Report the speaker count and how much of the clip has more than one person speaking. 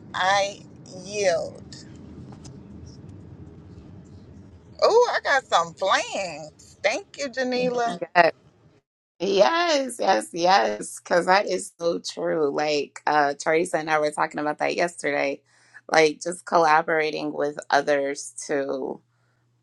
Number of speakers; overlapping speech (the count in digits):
2, no overlap